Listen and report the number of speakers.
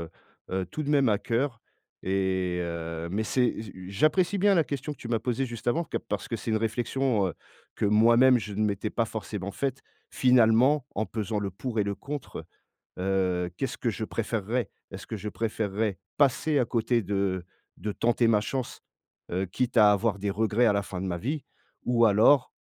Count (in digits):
1